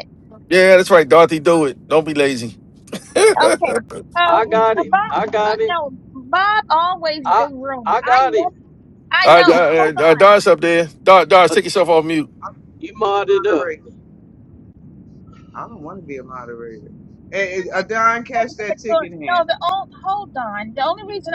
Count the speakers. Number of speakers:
four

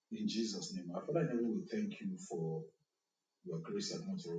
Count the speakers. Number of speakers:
one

